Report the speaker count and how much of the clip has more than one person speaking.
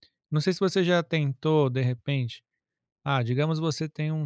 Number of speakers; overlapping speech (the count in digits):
1, no overlap